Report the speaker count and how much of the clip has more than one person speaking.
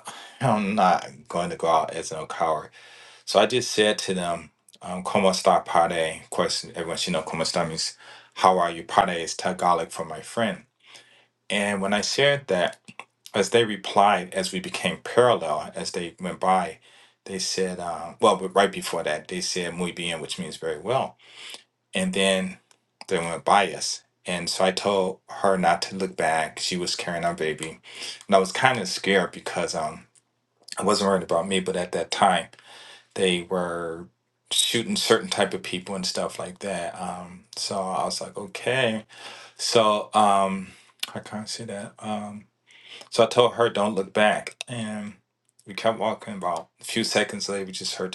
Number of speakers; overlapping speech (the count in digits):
1, no overlap